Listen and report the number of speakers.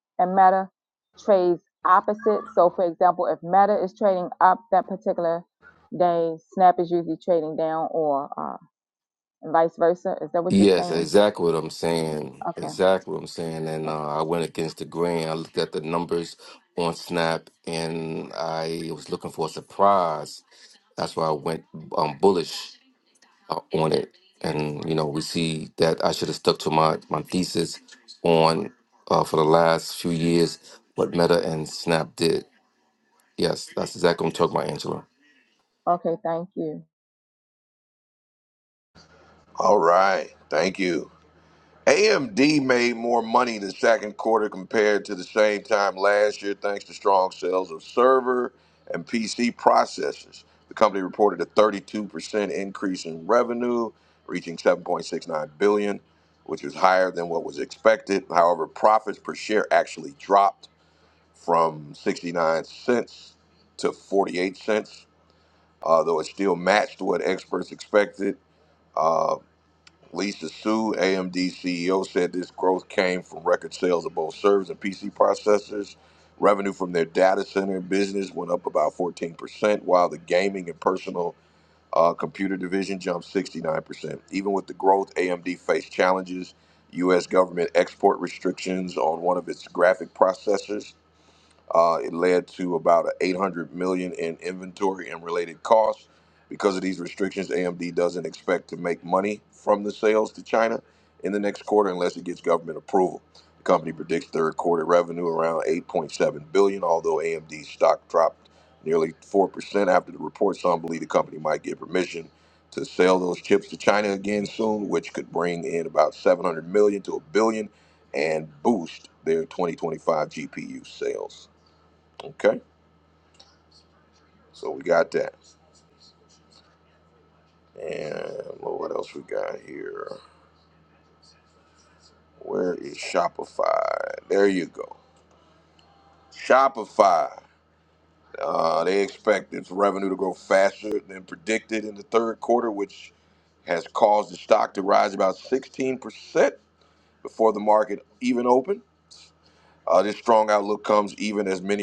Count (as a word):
three